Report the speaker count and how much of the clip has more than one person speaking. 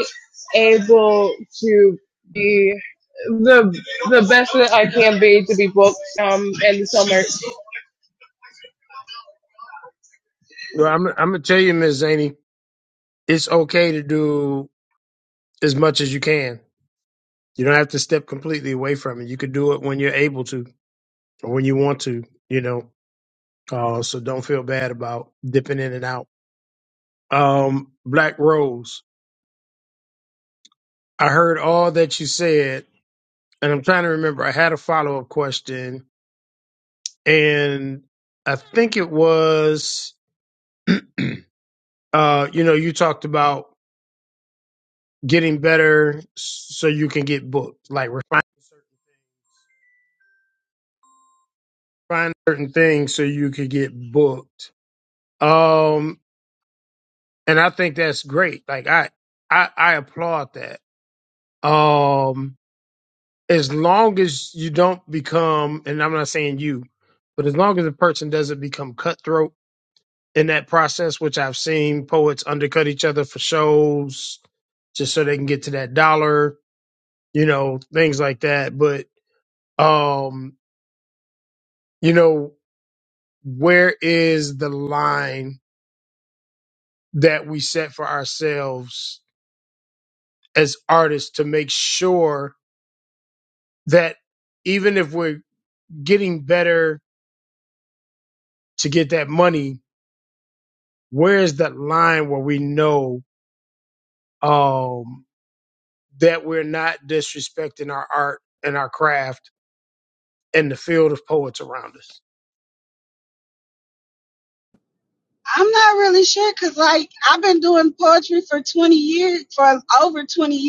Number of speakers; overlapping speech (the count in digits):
3, no overlap